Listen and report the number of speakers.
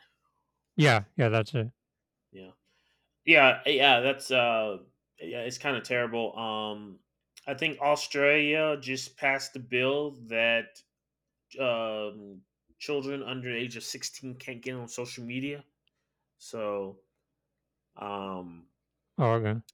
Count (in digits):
2